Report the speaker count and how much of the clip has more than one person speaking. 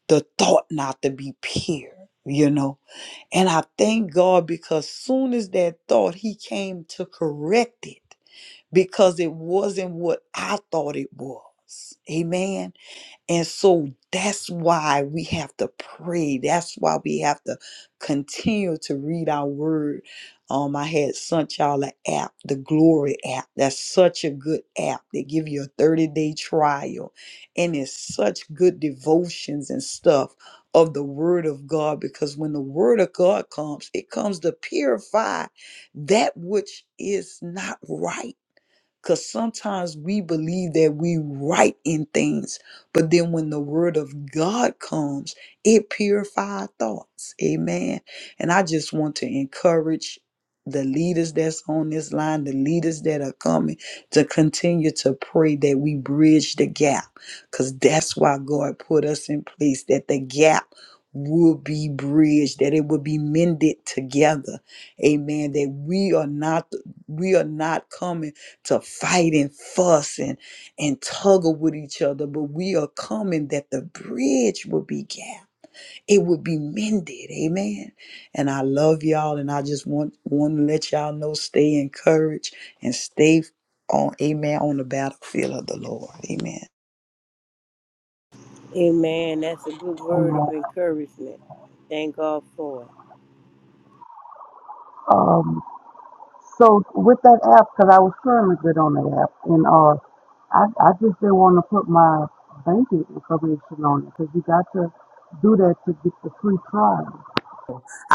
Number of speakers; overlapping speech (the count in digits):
3, under 1%